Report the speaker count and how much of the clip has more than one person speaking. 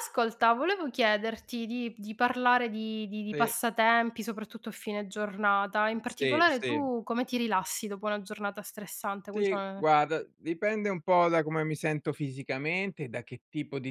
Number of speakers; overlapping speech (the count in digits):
2, about 10%